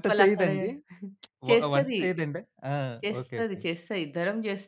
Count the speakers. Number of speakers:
two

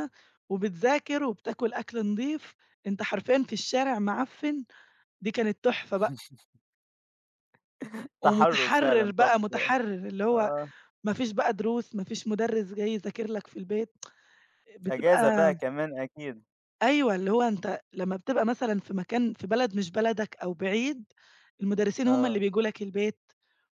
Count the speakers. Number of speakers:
two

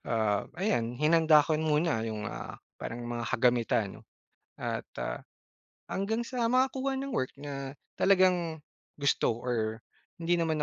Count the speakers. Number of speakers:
one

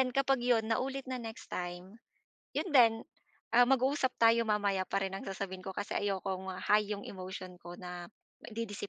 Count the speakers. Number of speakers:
one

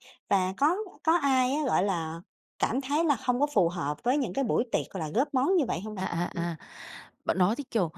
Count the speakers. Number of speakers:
two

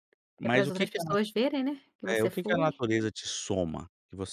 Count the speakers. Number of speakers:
two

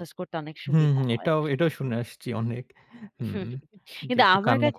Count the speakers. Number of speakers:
two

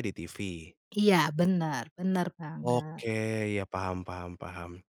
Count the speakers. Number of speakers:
two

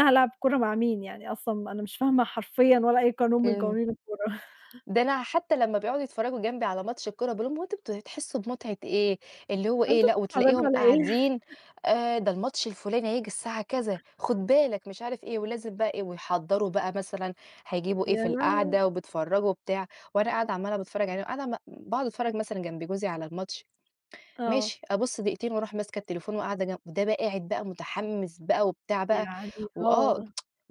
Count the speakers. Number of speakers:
two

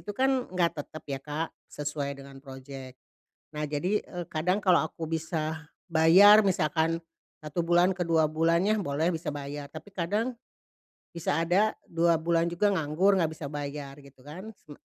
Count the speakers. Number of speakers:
one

